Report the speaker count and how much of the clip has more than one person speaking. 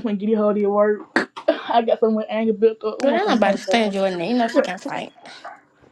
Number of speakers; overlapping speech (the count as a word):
two, about 10%